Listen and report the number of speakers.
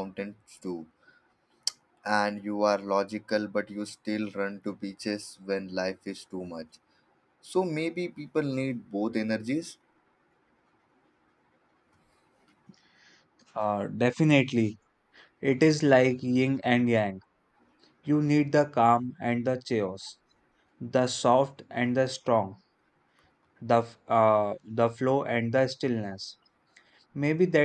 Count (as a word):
two